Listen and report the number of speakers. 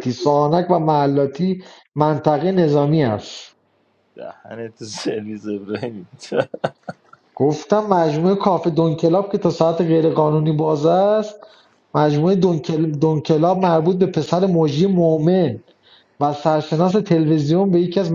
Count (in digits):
2